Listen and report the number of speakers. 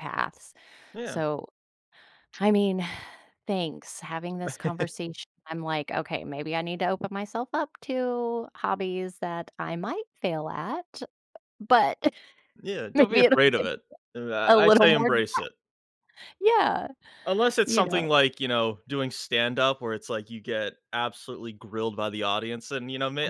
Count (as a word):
two